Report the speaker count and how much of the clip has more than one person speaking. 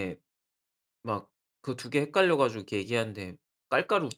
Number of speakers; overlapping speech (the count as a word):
one, no overlap